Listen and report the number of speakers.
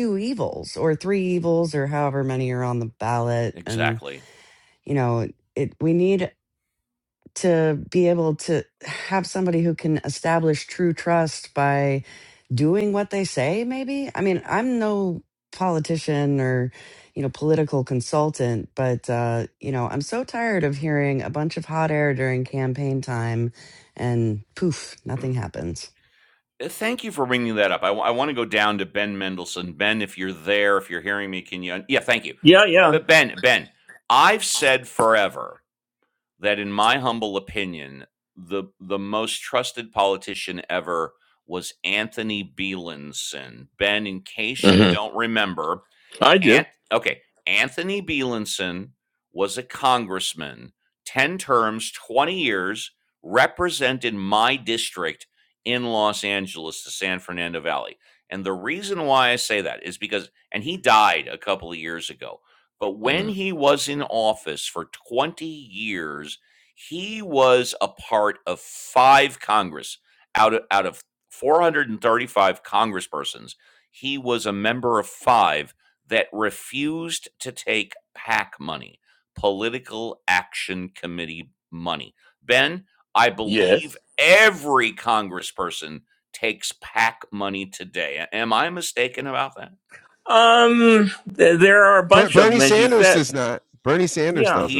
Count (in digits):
4